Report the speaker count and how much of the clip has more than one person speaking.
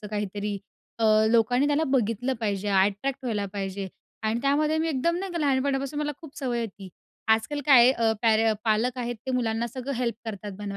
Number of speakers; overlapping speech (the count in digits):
1, no overlap